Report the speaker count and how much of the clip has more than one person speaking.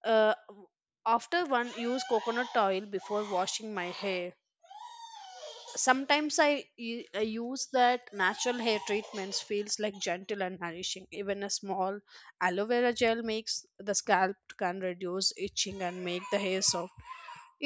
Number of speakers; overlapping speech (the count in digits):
1, no overlap